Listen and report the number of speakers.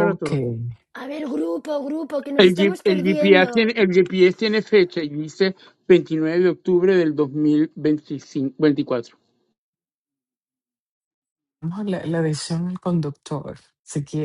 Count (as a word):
three